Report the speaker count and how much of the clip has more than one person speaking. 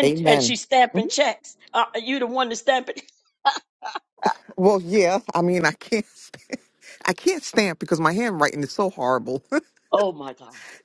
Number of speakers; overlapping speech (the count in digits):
2, about 6%